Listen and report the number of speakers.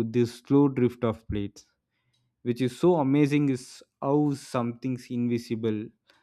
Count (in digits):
1